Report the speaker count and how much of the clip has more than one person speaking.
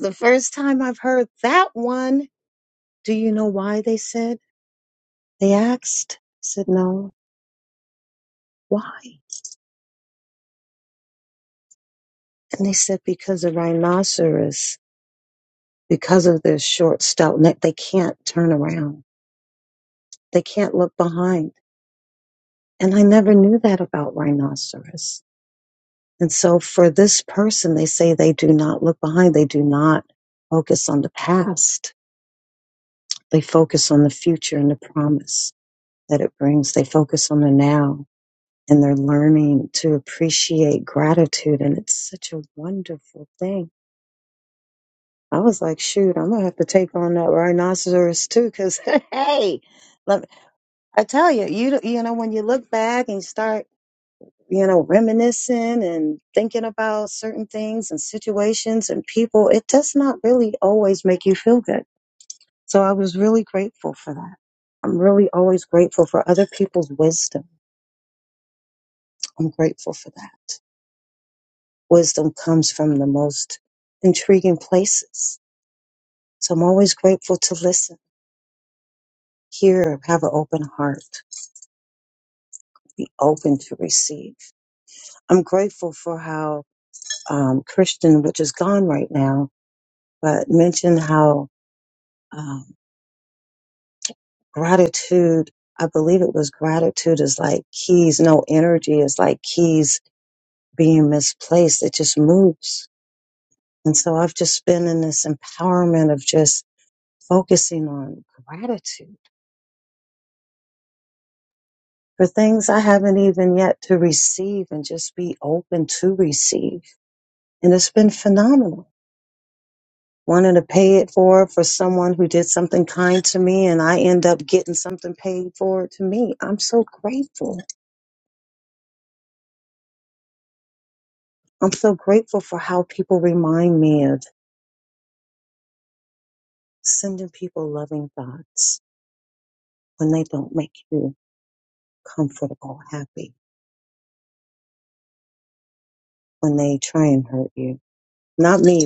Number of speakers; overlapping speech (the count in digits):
1, no overlap